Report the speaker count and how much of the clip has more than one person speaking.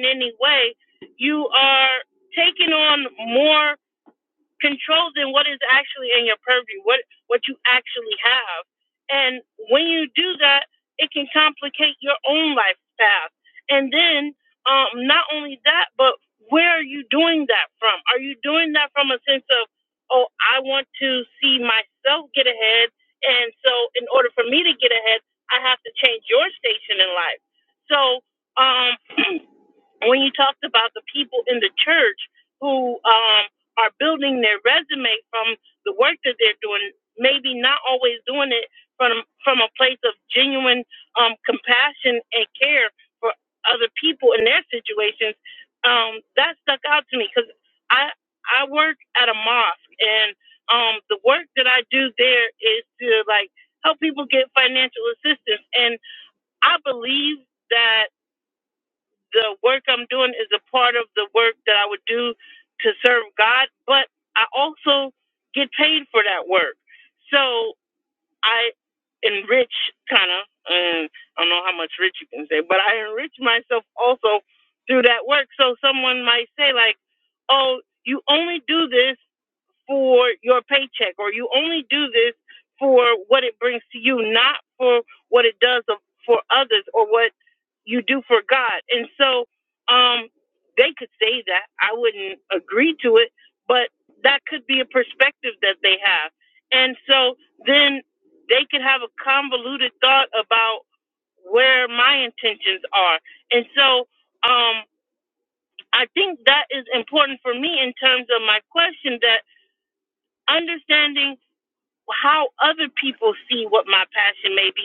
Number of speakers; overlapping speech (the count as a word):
one, no overlap